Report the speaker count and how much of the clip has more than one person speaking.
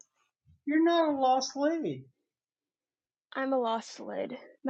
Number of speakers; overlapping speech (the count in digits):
2, no overlap